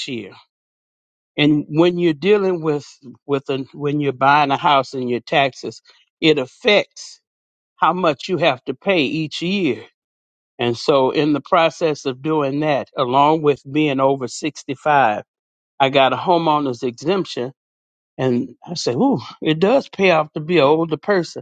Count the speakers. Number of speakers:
1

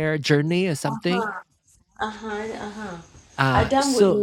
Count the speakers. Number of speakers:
2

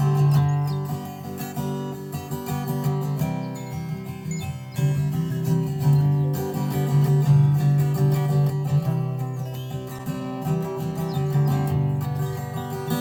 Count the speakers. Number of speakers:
0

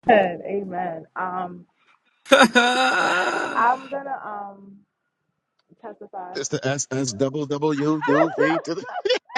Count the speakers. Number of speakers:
3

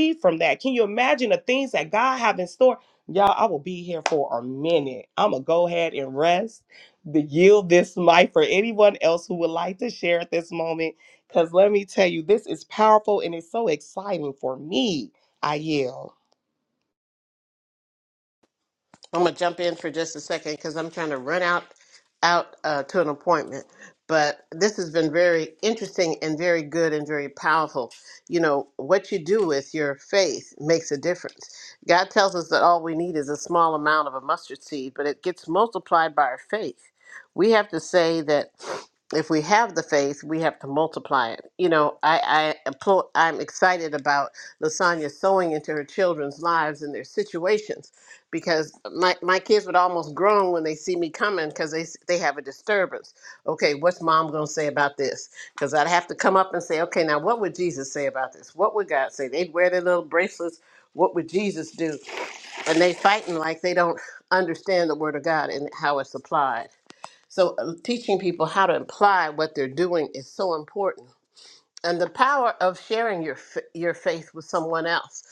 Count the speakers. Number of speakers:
2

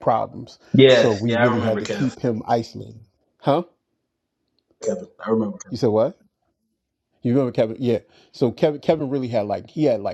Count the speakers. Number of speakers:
2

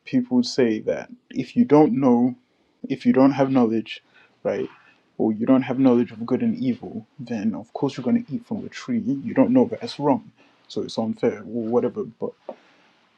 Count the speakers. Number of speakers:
1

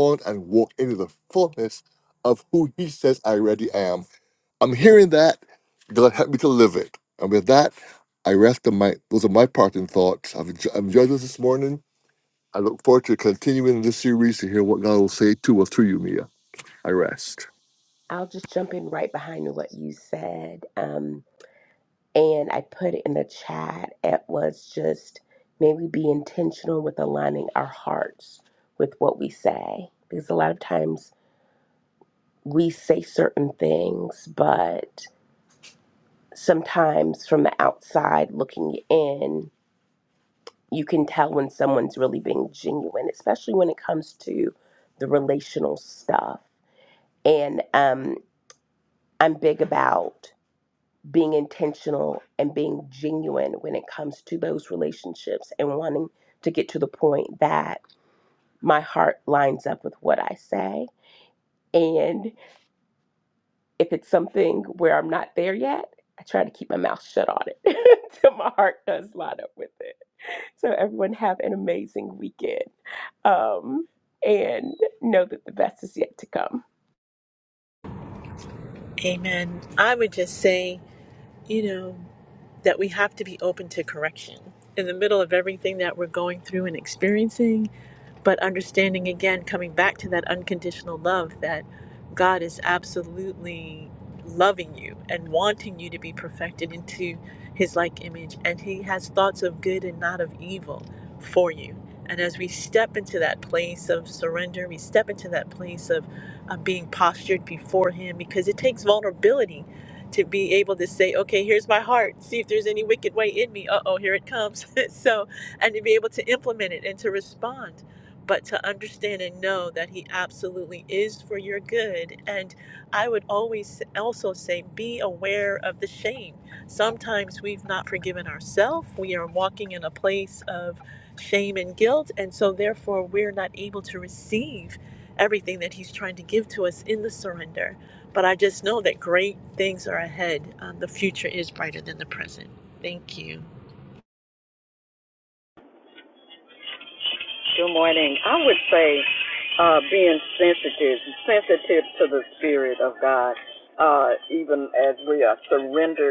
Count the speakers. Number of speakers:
4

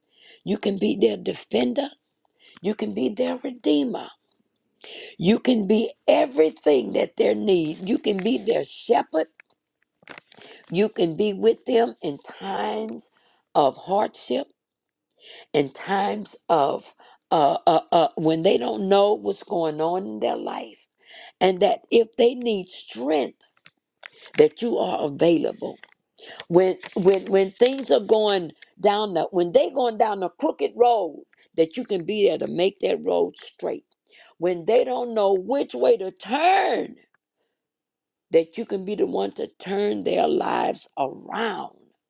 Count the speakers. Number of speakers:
1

